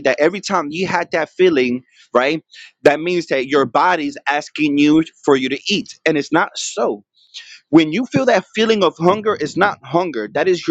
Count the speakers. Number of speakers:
1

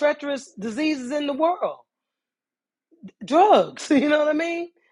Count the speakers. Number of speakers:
1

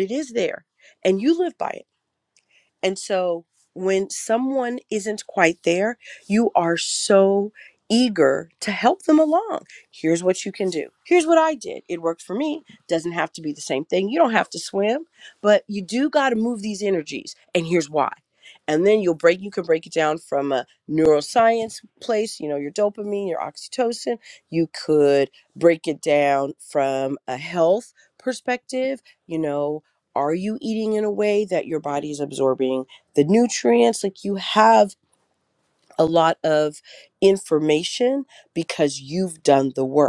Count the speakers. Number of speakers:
1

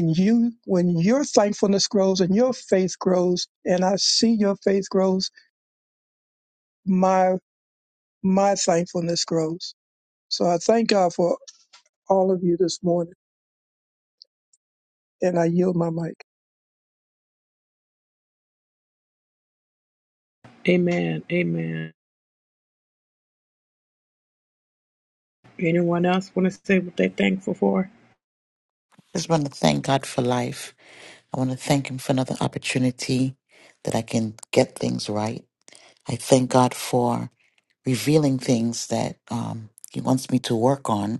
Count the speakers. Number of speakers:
3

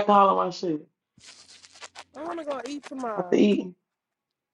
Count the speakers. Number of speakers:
2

